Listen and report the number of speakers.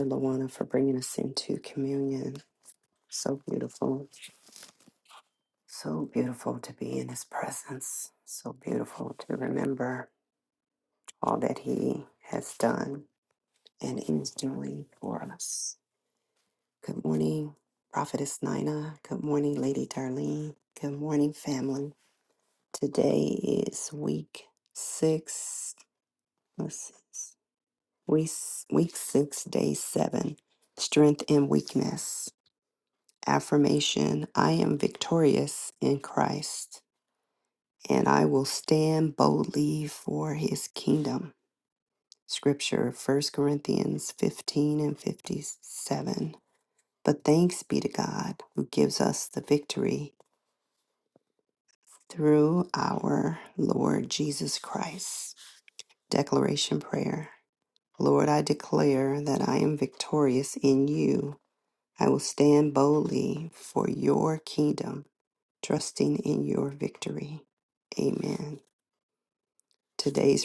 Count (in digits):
1